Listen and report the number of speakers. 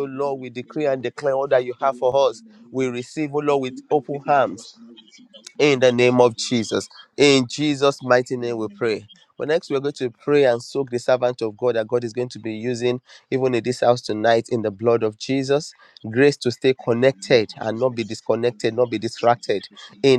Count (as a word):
two